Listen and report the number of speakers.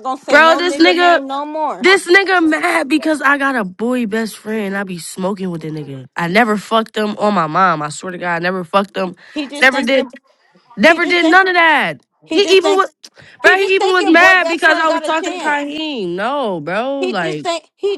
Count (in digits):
2